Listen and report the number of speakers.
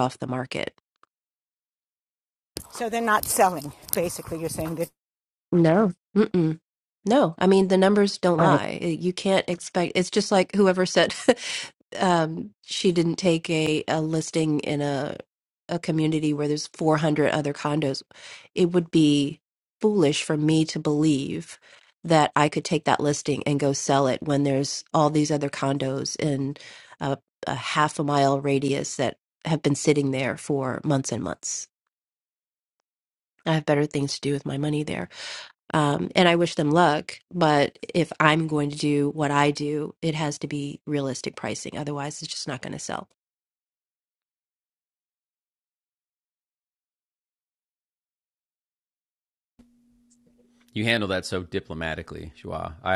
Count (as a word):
three